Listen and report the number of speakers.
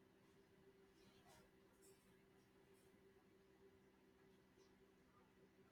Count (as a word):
zero